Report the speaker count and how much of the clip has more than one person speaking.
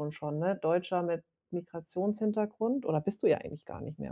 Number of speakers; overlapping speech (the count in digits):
1, no overlap